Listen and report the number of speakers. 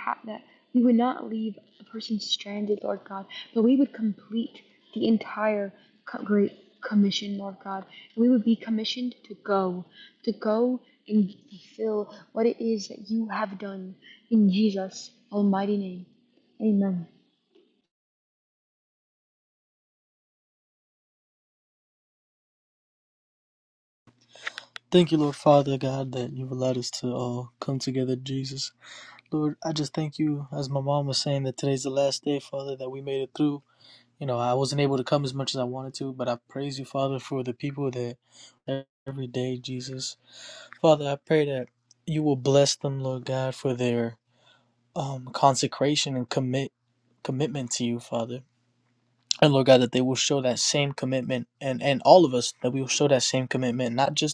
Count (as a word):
two